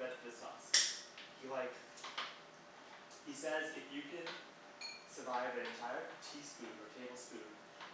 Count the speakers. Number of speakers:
1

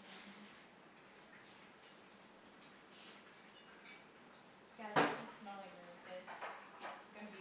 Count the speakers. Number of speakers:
1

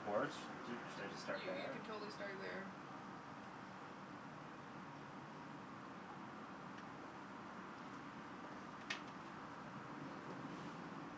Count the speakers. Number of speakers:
2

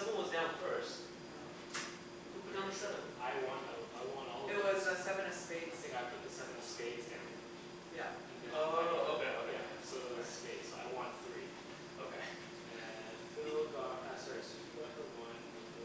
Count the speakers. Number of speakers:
3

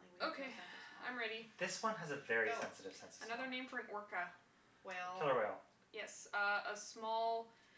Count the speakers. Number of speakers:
3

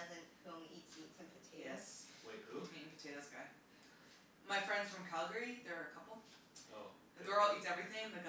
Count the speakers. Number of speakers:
3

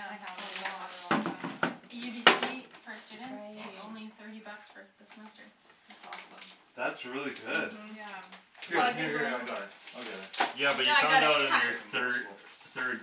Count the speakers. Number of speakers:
4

